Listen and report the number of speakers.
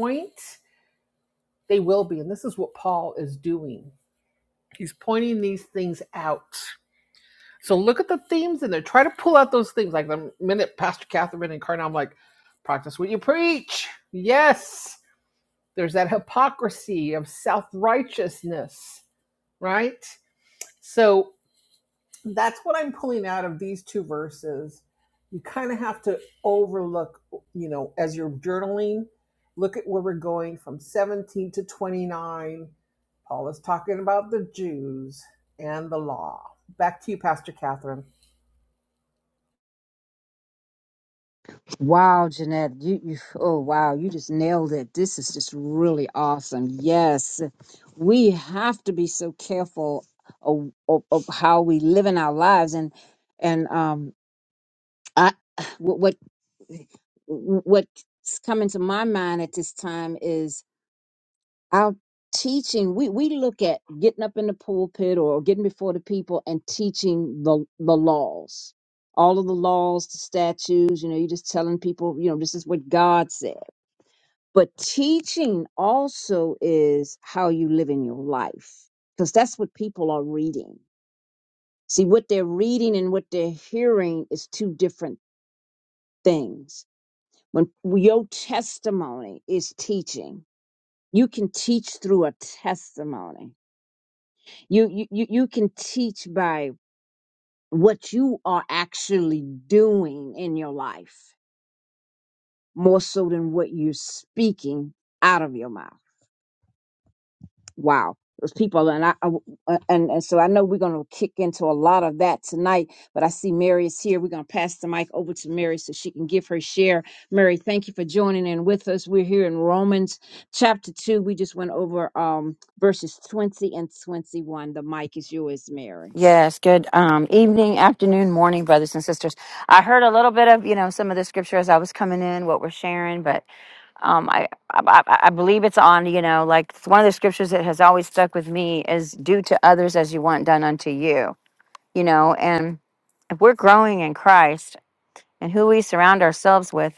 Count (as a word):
three